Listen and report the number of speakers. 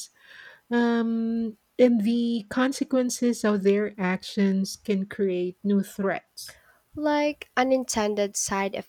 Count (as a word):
two